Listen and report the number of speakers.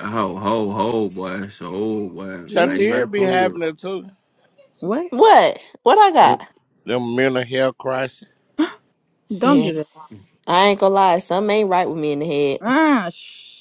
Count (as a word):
four